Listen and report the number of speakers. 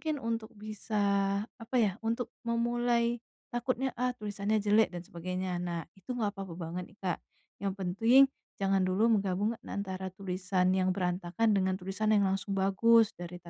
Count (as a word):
one